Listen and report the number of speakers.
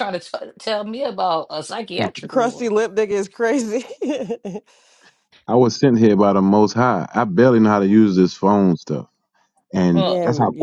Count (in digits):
3